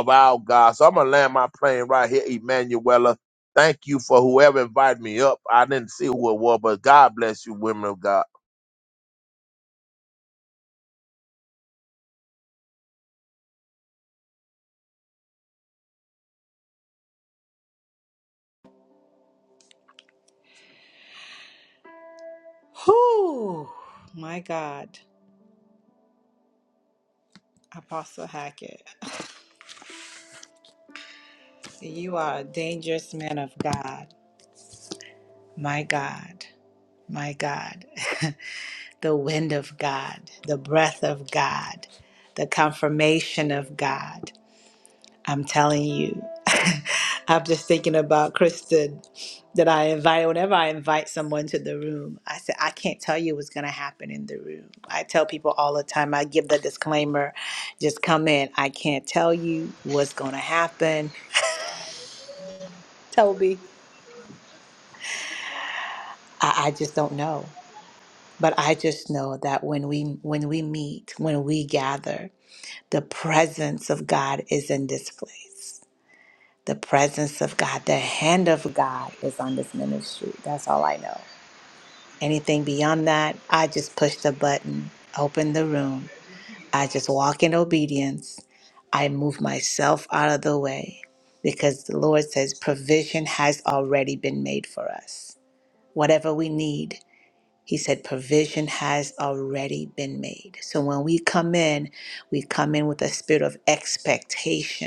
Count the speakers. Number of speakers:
2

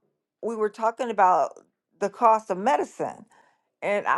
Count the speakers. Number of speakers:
1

